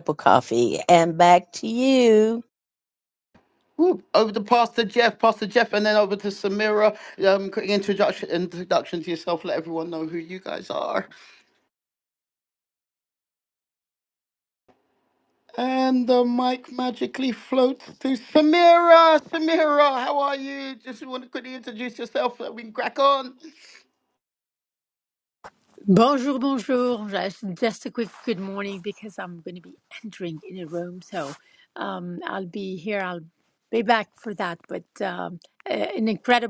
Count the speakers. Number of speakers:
3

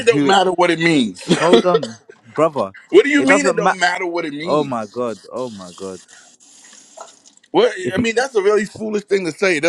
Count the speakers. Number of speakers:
2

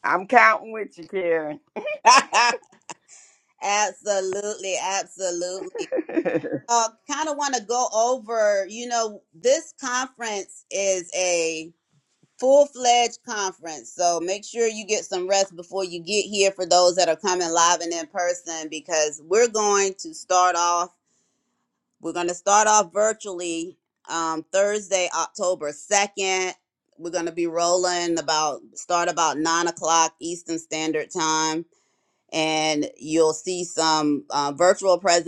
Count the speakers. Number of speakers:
2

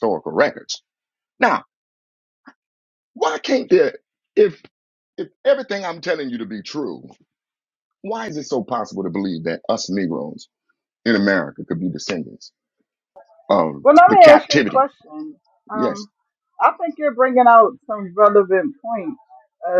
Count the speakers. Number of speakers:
2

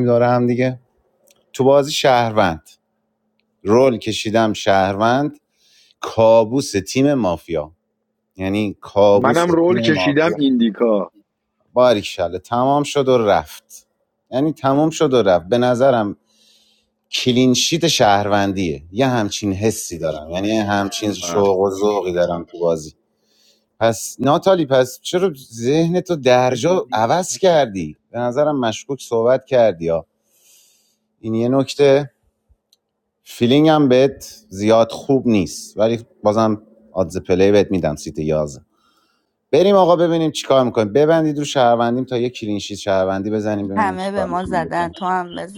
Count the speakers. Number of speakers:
3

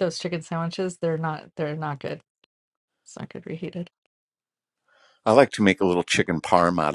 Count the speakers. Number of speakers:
2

